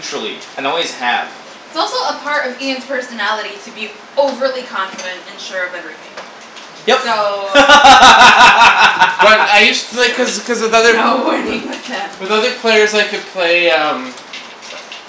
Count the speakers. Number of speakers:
three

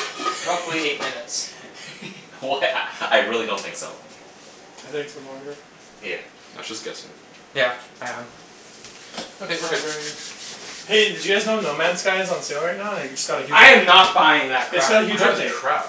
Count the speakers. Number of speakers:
four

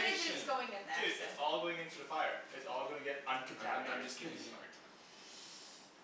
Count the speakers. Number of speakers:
three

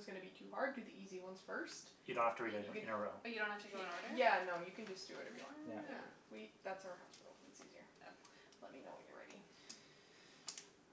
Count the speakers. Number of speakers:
three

